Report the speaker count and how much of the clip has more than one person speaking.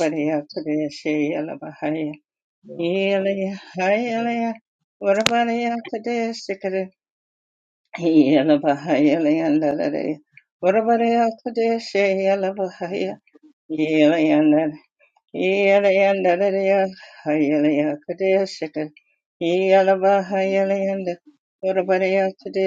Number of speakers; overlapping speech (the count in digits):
1, no overlap